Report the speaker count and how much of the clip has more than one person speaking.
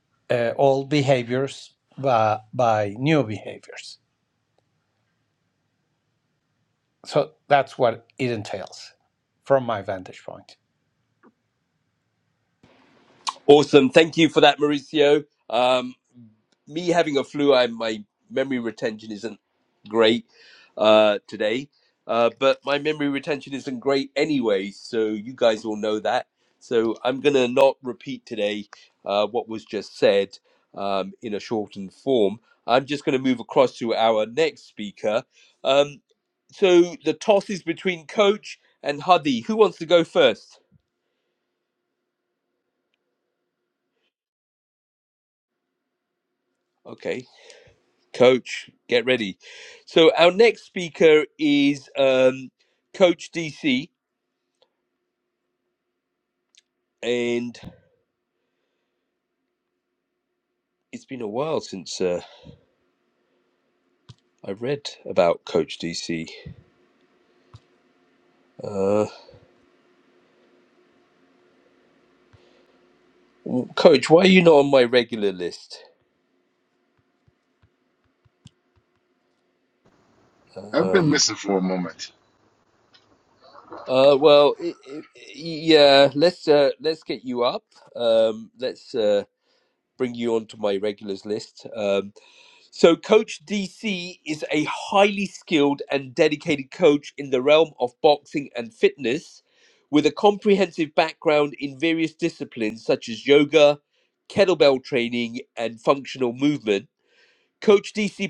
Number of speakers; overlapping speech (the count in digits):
3, under 1%